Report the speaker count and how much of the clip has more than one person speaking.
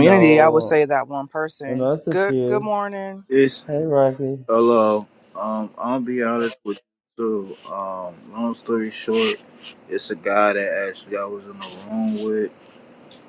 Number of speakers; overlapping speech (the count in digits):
3, about 14%